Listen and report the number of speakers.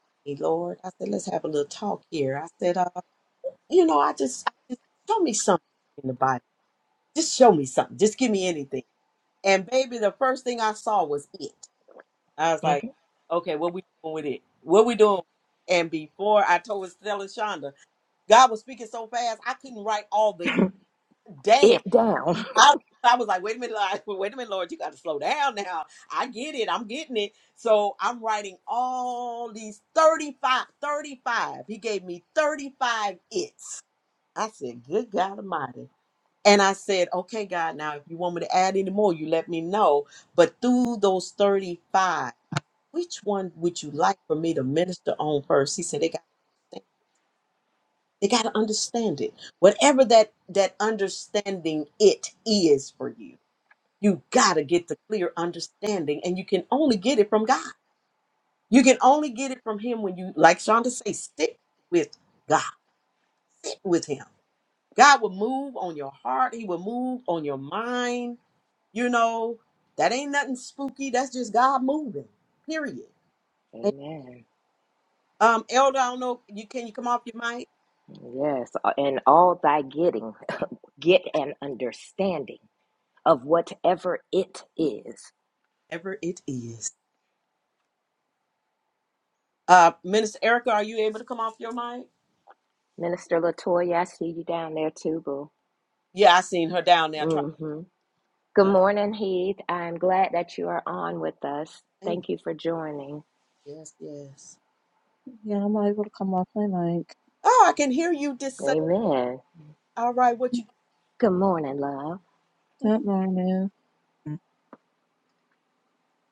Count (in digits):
3